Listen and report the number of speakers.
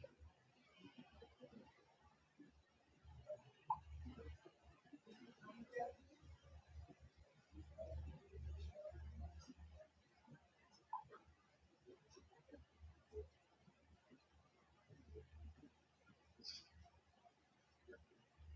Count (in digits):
0